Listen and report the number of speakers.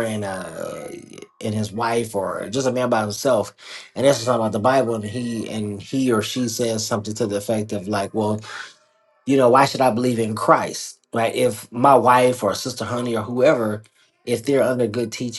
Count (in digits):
1